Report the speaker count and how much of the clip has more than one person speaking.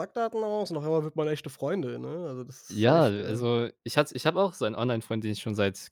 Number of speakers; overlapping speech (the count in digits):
2, about 10%